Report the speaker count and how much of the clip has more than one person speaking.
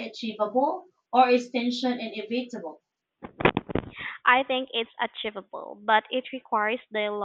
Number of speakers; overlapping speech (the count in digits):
2, no overlap